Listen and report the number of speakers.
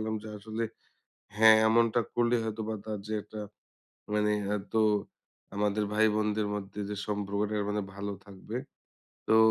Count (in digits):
1